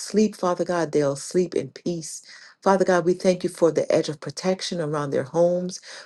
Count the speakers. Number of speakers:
one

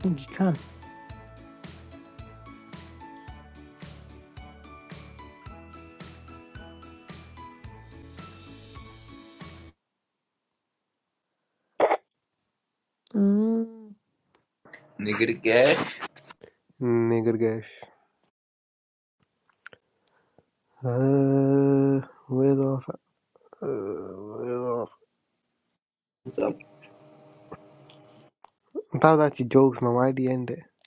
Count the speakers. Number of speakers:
three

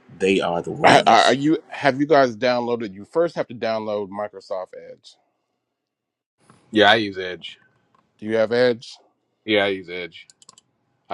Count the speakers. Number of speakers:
three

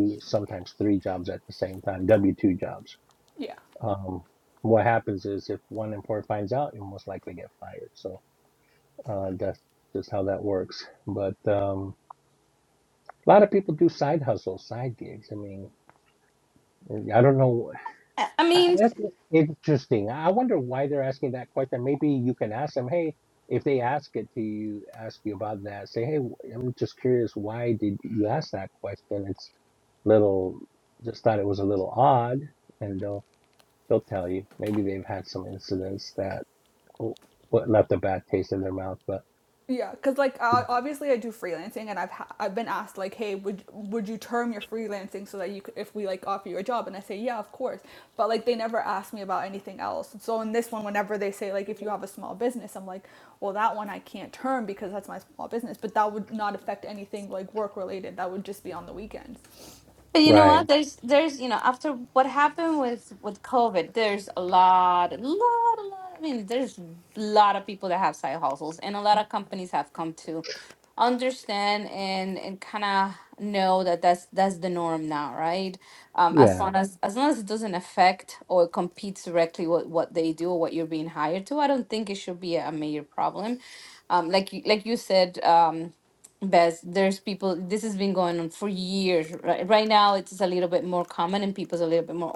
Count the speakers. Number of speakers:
three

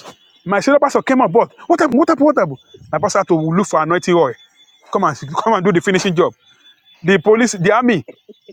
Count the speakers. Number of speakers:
one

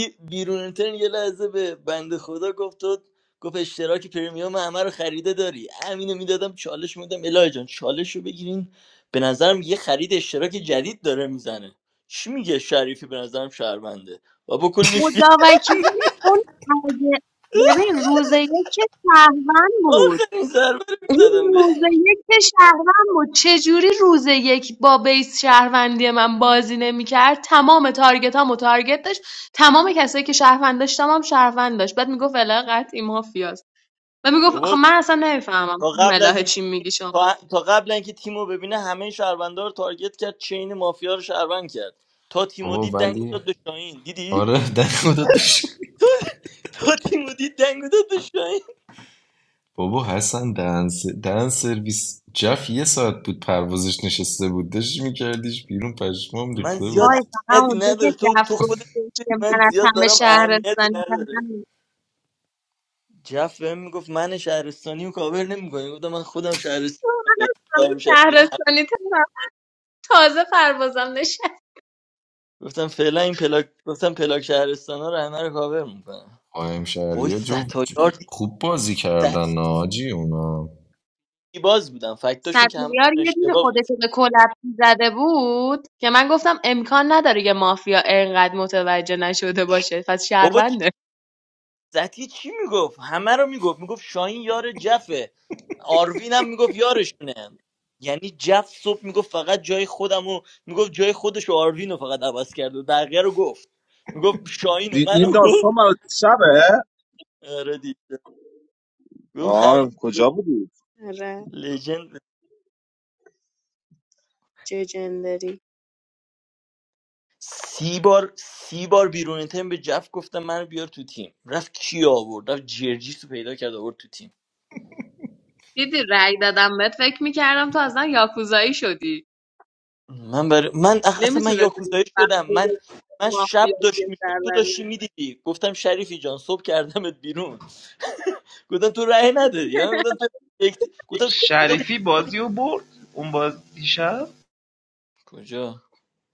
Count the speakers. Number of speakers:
five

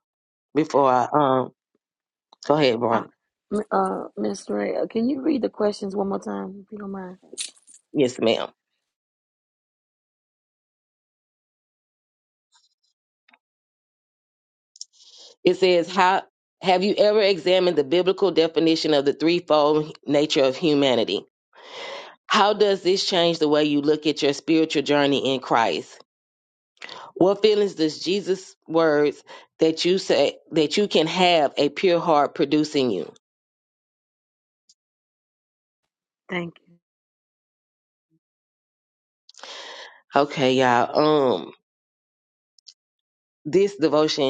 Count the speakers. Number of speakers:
two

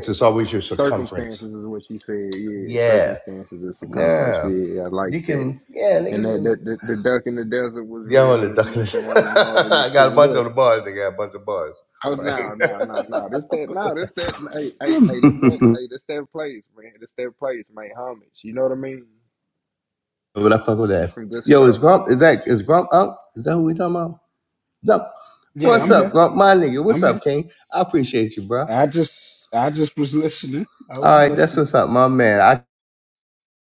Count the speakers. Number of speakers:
three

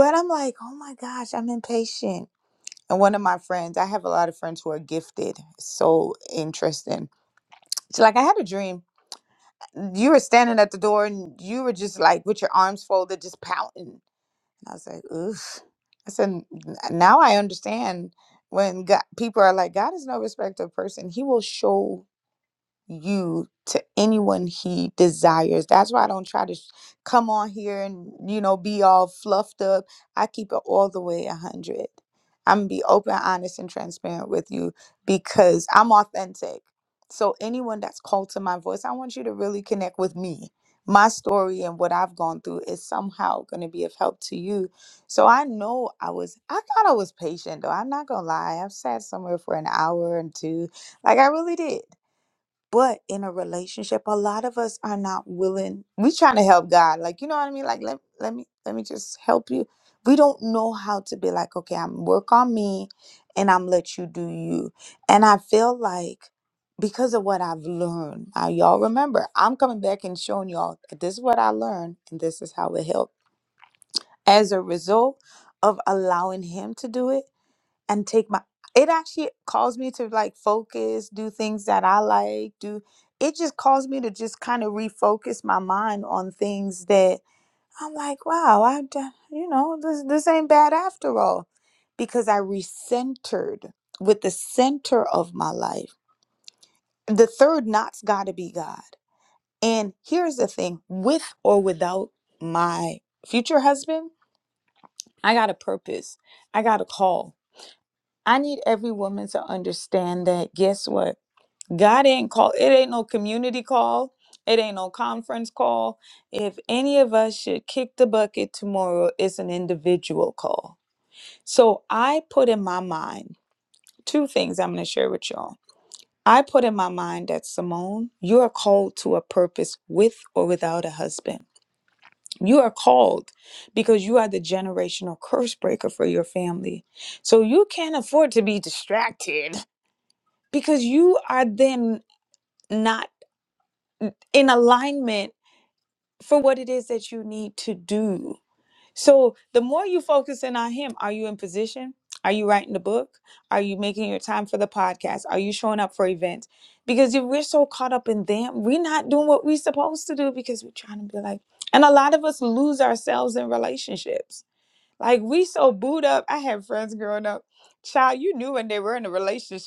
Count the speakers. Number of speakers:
one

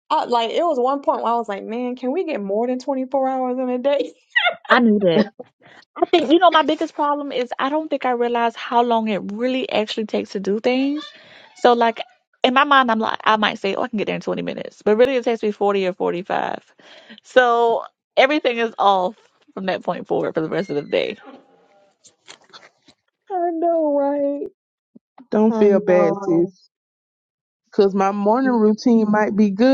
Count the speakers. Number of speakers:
three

